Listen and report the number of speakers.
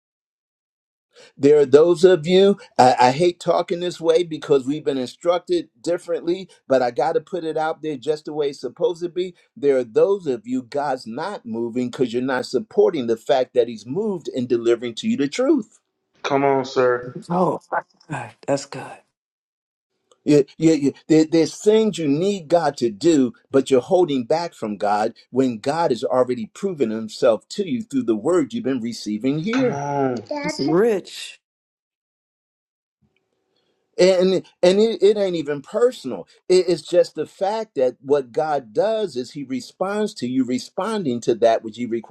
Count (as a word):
three